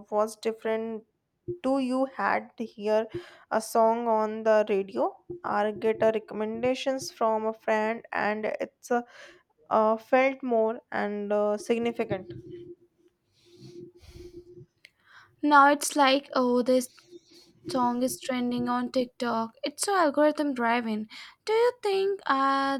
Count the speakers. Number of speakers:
2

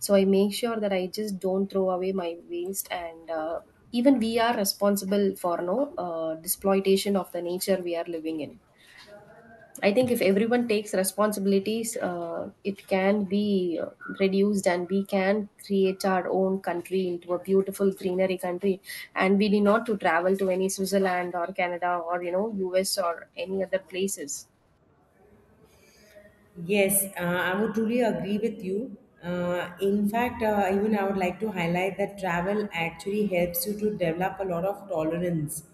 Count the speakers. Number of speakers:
2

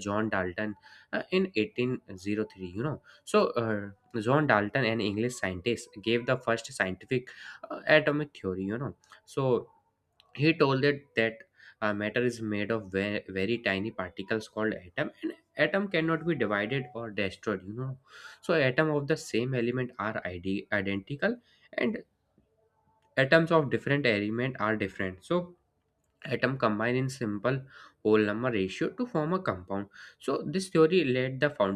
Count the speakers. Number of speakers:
1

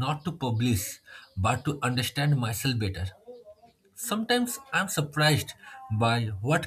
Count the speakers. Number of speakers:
1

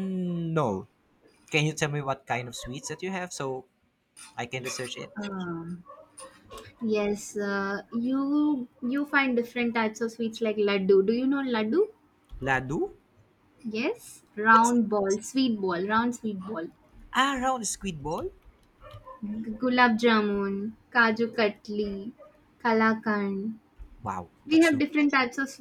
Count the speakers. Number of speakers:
2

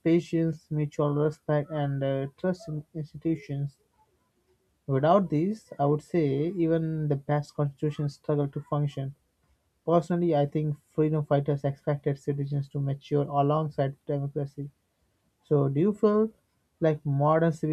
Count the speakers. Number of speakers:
1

